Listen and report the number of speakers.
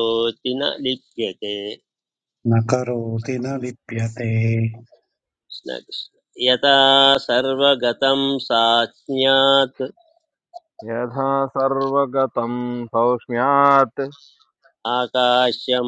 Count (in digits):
3